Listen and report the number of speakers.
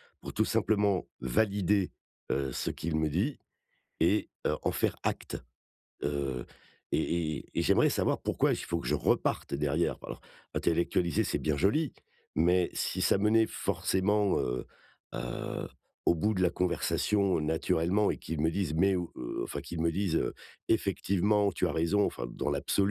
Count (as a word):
one